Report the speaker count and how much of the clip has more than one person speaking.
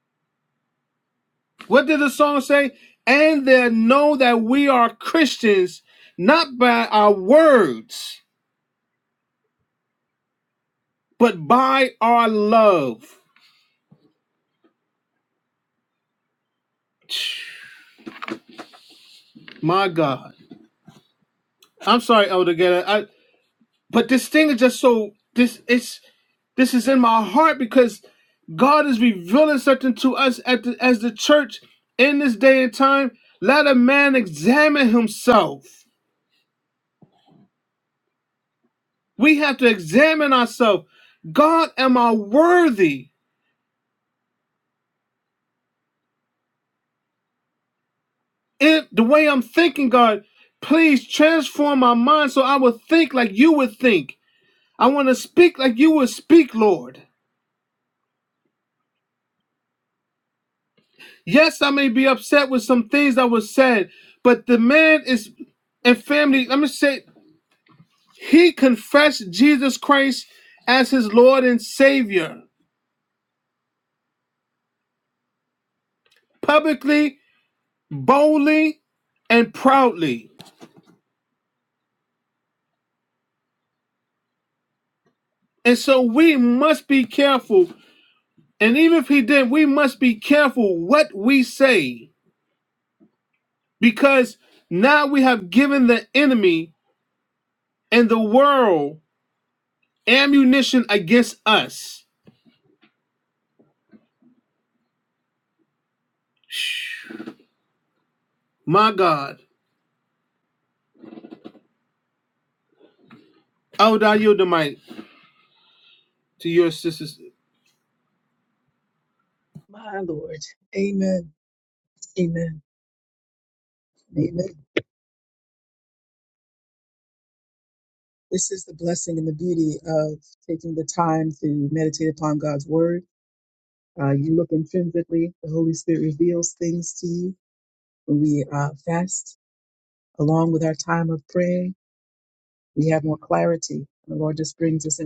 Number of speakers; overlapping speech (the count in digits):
2, no overlap